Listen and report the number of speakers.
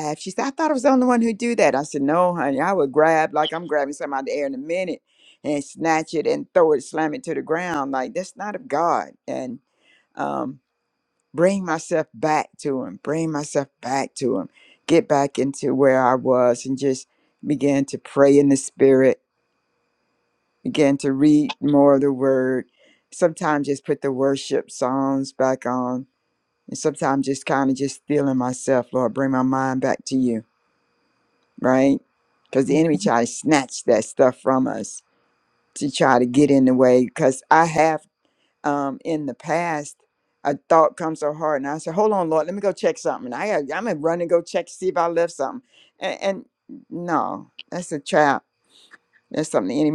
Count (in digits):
1